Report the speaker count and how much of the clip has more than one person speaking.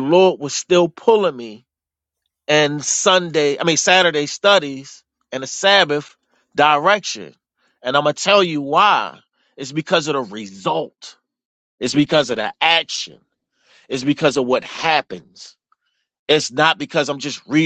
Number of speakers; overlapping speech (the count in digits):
1, no overlap